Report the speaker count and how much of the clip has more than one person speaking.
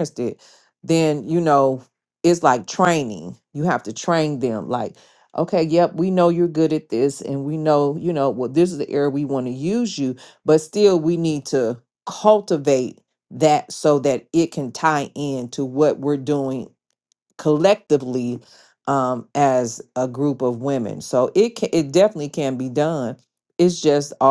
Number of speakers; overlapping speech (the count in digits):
1, no overlap